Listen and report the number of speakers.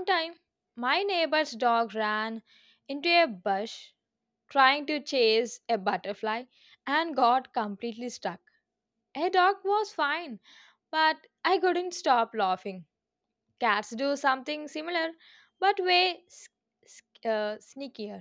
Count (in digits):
1